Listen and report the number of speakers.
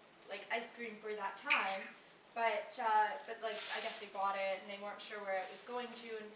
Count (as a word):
one